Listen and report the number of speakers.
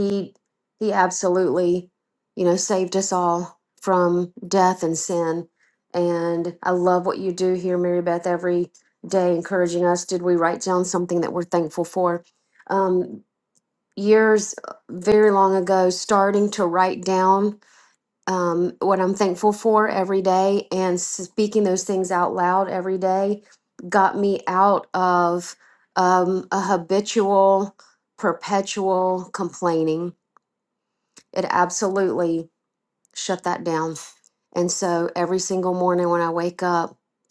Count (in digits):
1